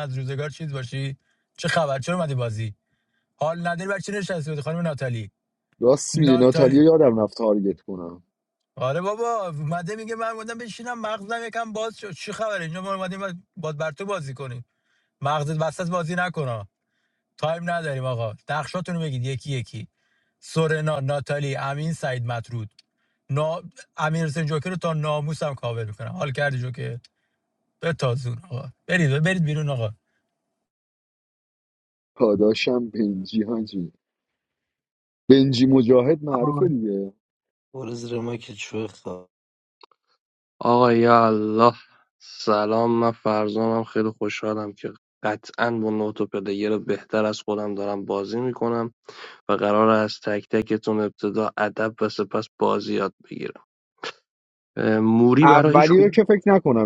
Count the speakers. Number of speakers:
four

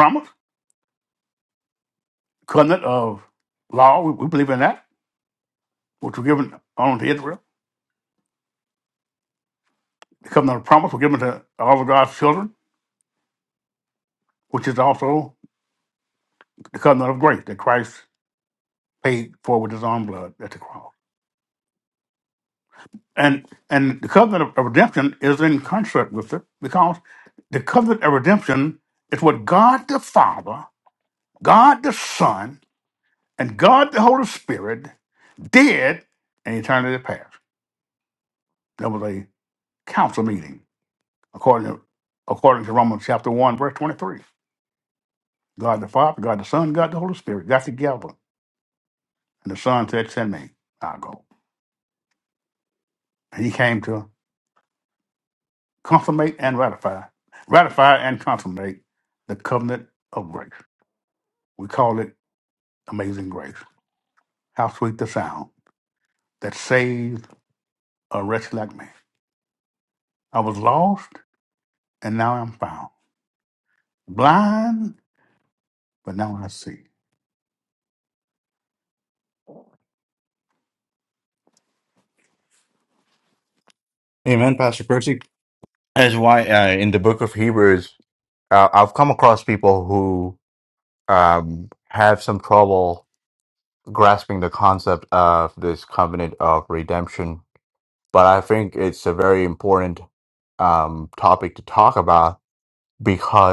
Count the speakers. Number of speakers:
two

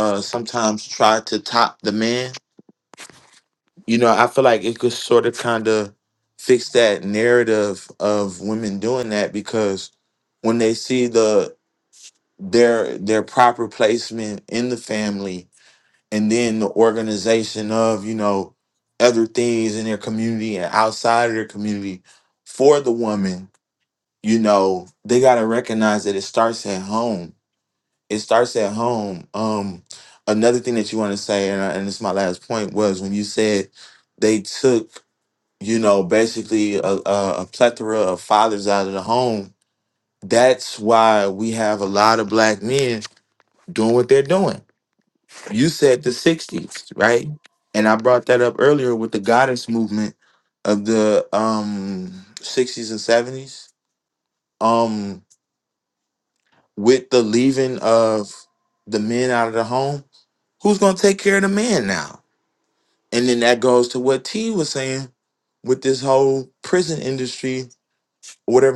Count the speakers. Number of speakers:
one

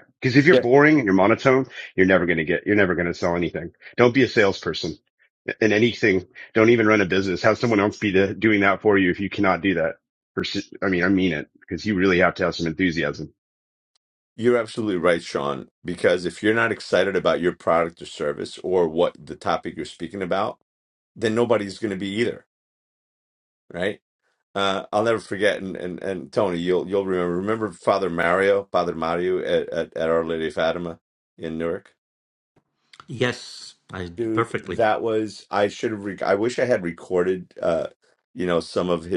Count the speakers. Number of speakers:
three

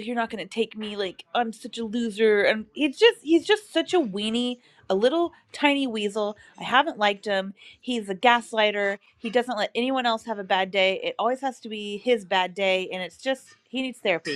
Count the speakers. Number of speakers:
one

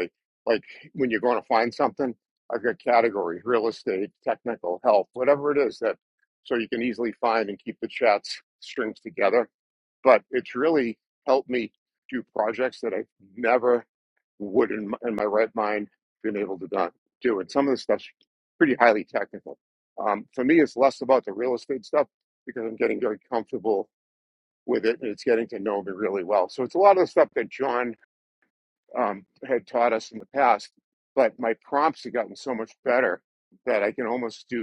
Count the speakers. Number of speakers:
one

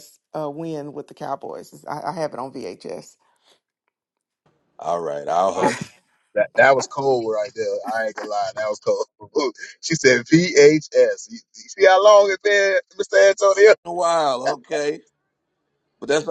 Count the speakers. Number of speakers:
three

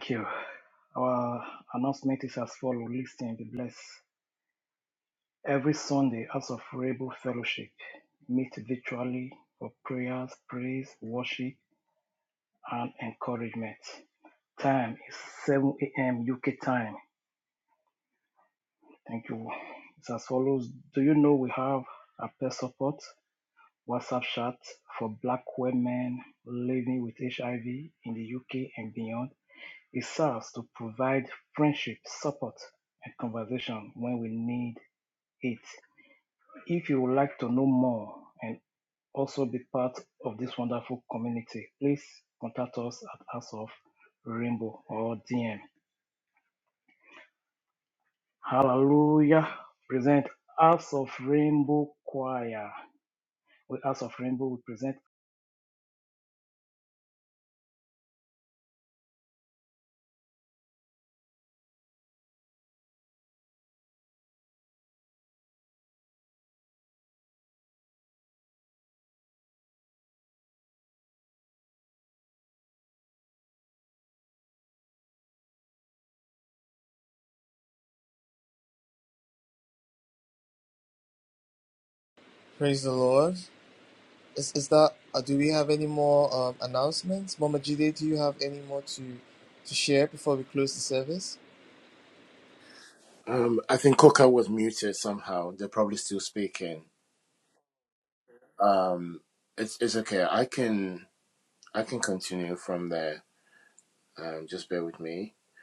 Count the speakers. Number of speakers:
three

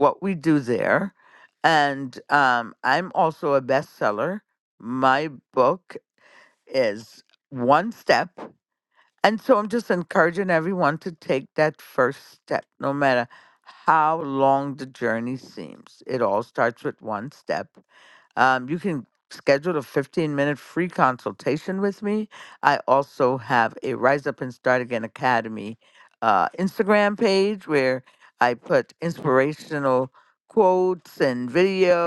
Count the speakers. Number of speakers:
one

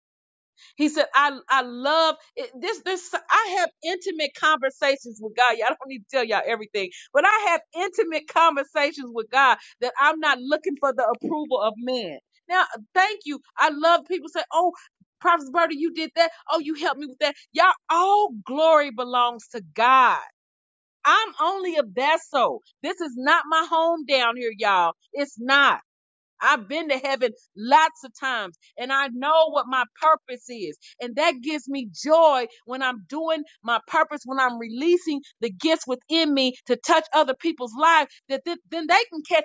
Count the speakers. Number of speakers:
one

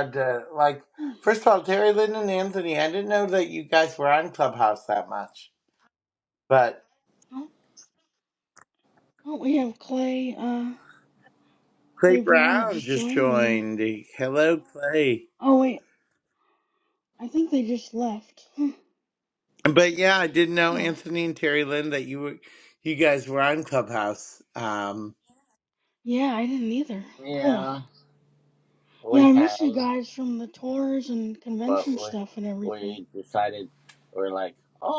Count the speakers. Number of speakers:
three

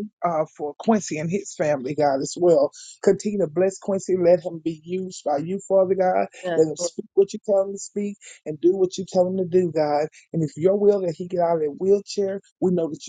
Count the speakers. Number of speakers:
one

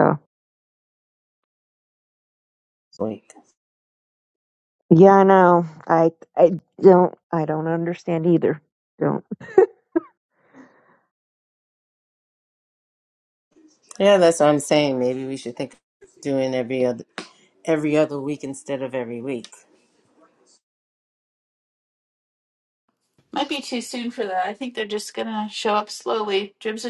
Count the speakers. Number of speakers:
three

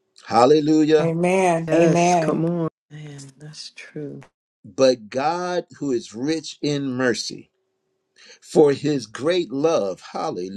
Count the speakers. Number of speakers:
three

